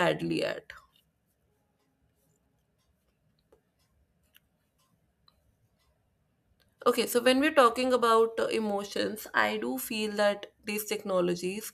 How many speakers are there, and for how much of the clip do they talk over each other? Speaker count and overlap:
1, no overlap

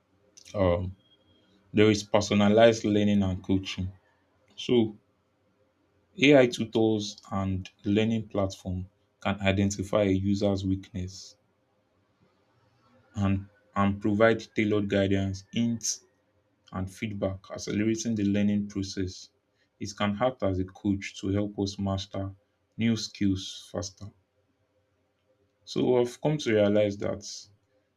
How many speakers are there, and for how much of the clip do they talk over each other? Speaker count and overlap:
1, no overlap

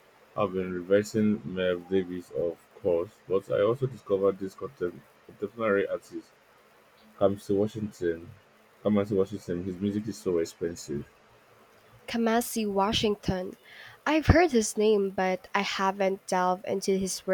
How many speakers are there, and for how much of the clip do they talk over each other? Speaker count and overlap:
2, no overlap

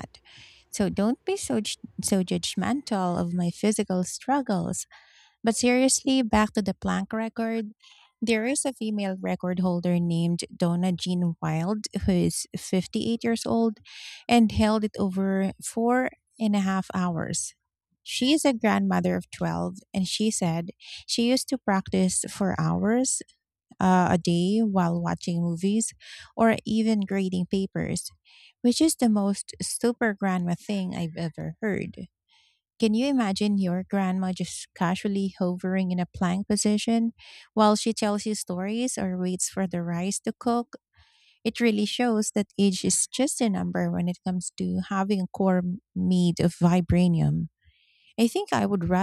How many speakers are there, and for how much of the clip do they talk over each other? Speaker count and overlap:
1, no overlap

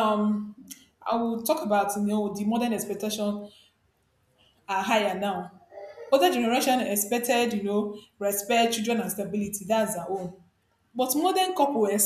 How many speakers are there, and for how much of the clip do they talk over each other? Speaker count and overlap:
1, no overlap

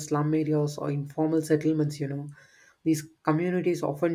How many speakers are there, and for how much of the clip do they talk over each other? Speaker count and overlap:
1, no overlap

